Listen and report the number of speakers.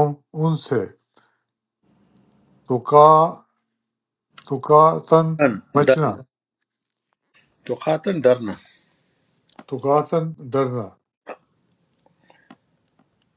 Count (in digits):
2